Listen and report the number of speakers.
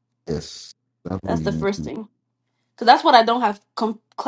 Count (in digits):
2